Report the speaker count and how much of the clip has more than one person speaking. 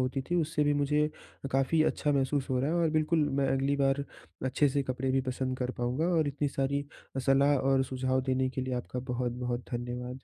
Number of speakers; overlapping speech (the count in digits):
1, no overlap